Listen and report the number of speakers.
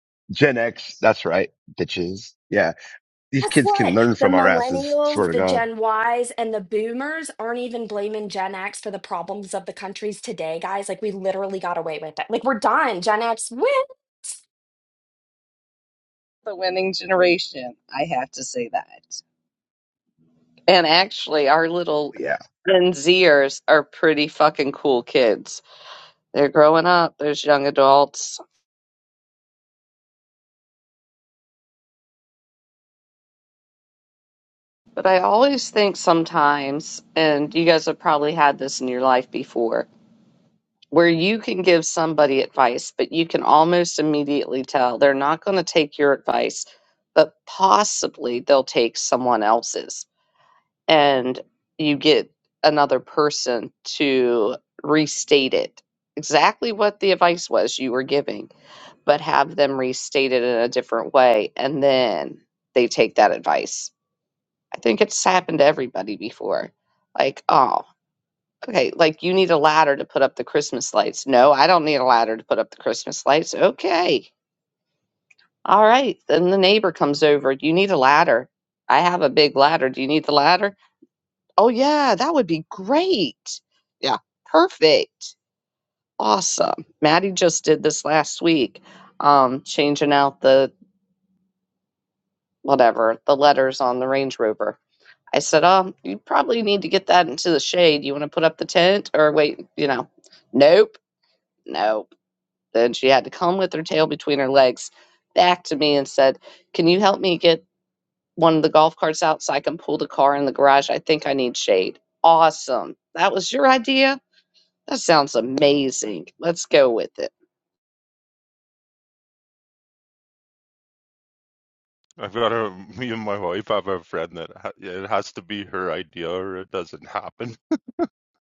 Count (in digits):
4